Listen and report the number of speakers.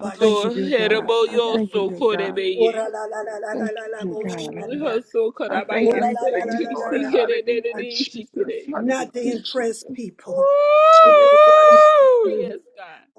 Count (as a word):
three